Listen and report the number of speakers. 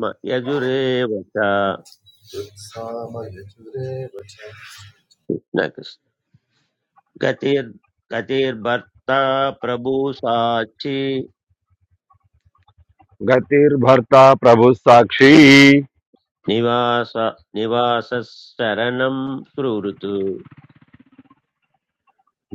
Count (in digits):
3